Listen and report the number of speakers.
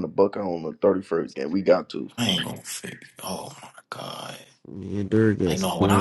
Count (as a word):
three